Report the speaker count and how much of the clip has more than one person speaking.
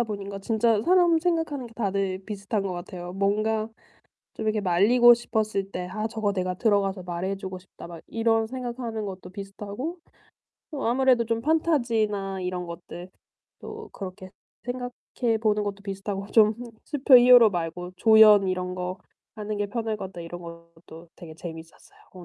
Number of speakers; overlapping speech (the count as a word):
one, no overlap